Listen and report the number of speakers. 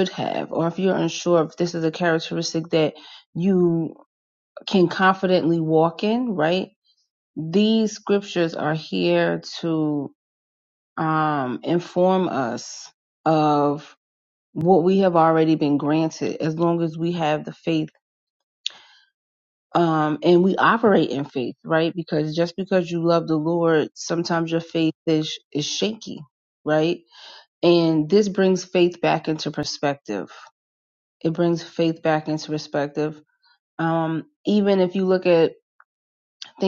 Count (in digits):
1